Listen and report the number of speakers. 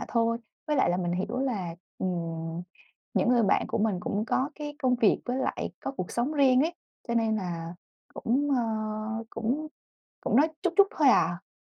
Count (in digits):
1